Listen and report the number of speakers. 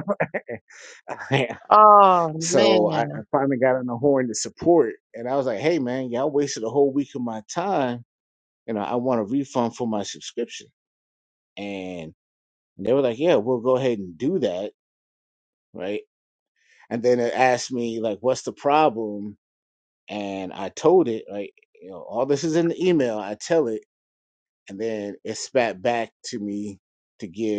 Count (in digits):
2